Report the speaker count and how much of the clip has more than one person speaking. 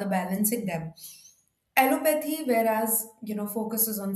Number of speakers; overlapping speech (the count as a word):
one, no overlap